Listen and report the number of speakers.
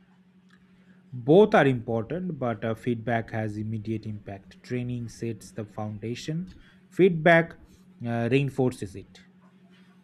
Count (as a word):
one